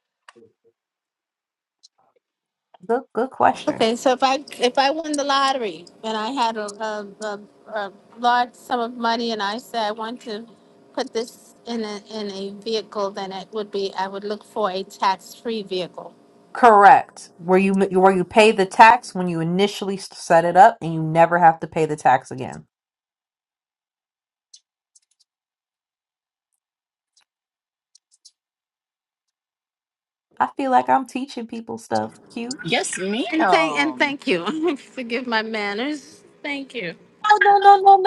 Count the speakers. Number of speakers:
three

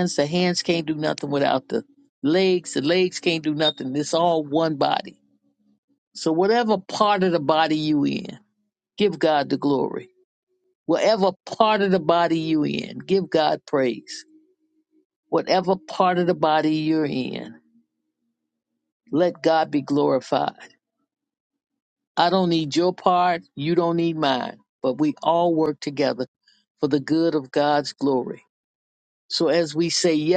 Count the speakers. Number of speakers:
one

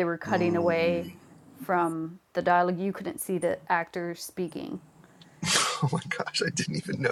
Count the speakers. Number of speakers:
two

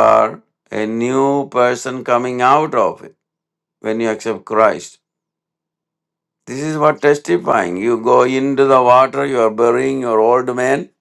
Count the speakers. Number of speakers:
one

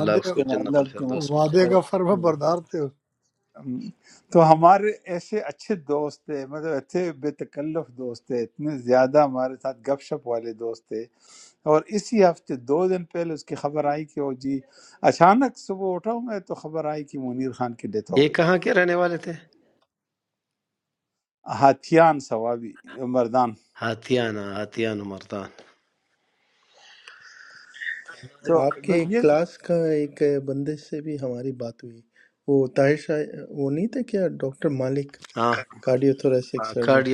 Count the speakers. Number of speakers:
four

